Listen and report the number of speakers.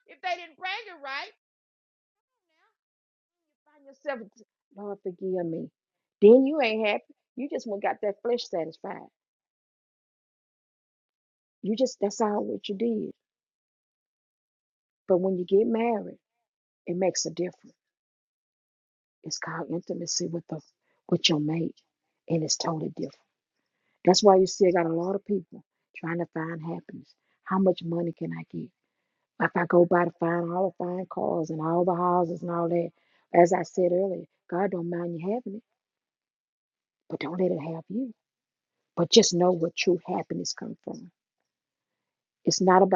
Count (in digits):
1